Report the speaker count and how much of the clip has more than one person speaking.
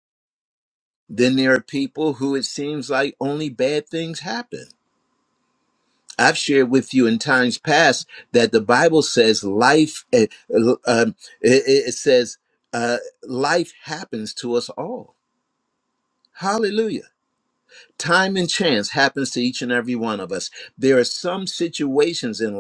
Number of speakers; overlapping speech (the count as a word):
one, no overlap